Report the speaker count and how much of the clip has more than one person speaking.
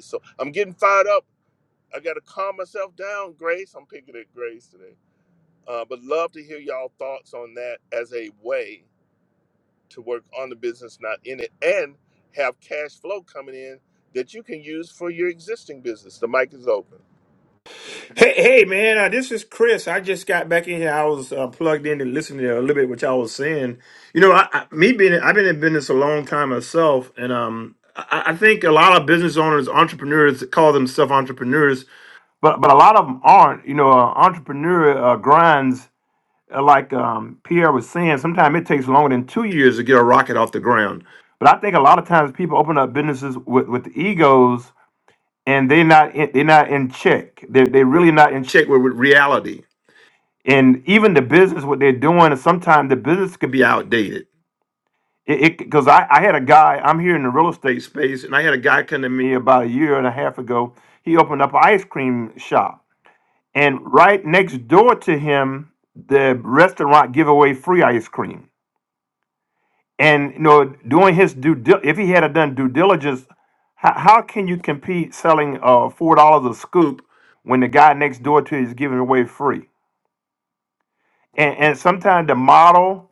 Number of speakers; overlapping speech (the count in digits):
2, no overlap